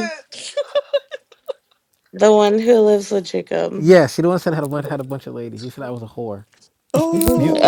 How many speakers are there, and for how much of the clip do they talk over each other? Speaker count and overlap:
3, about 11%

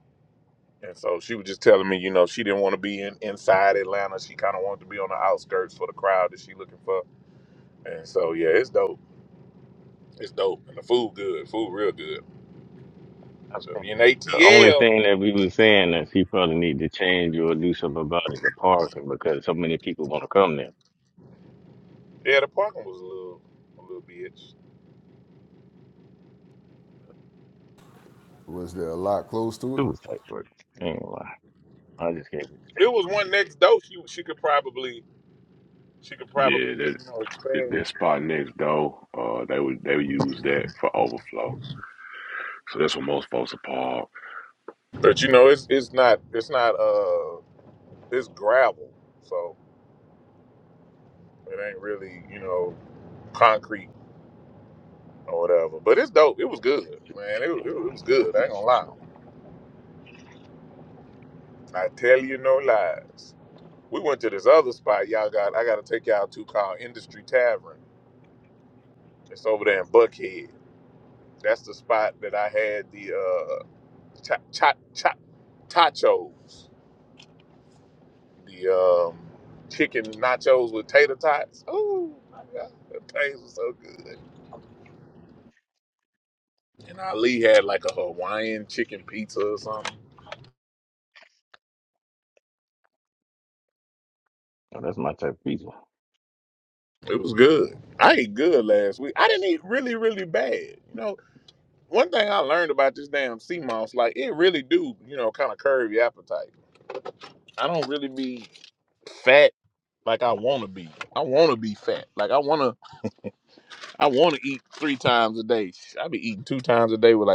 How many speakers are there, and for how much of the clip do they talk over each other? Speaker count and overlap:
4, about 3%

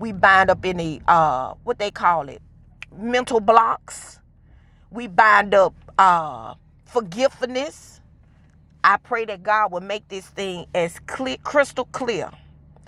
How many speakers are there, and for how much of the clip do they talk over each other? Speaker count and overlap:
1, no overlap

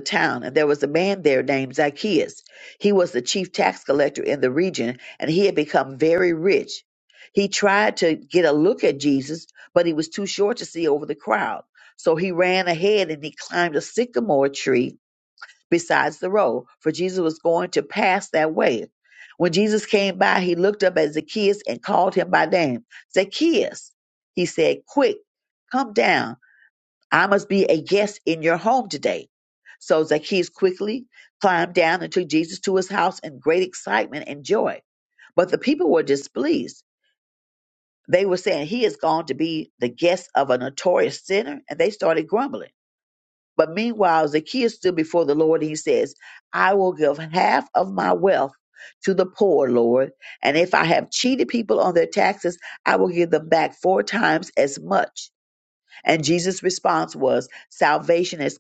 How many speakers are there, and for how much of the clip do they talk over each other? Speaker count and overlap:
1, no overlap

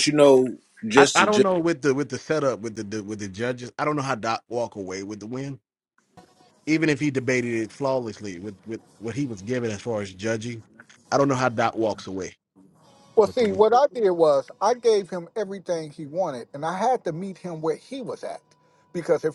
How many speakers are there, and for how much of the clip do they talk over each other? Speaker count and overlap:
3, about 4%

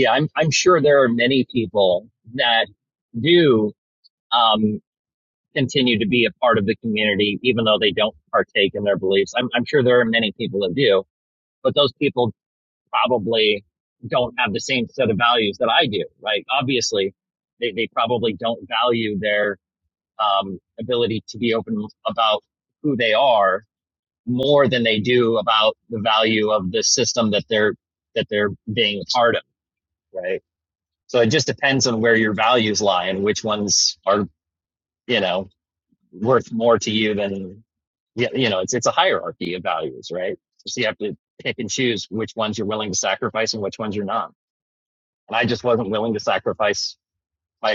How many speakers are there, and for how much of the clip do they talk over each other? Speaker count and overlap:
1, no overlap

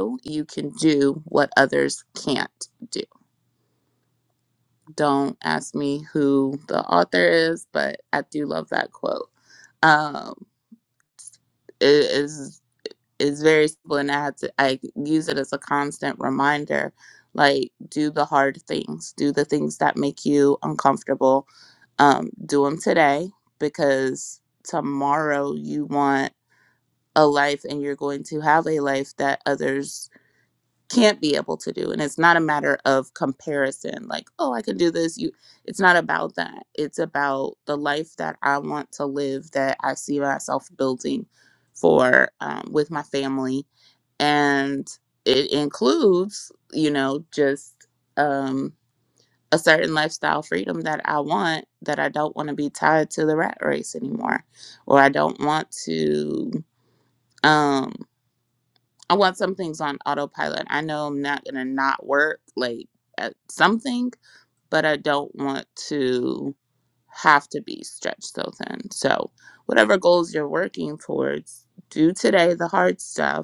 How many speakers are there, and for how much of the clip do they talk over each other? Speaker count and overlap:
1, no overlap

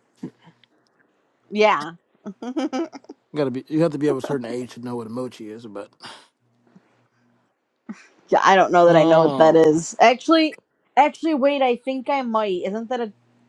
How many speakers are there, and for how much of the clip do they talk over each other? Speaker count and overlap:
2, about 6%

